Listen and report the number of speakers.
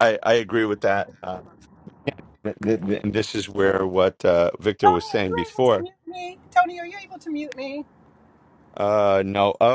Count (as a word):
two